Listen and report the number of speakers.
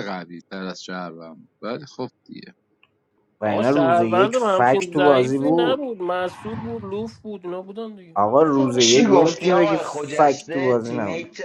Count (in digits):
4